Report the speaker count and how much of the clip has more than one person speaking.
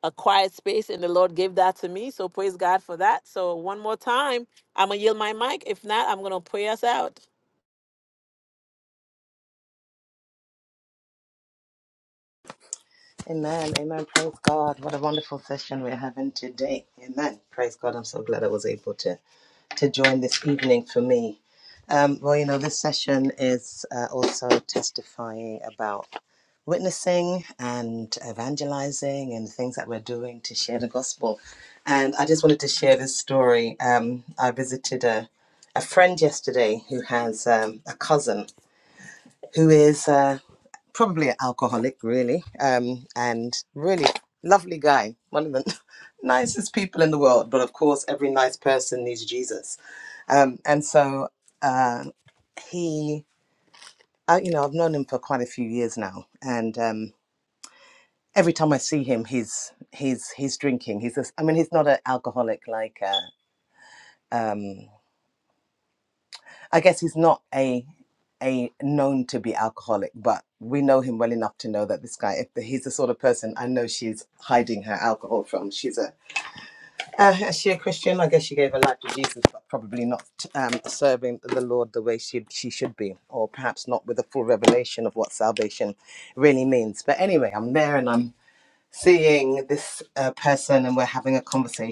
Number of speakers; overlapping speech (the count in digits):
2, no overlap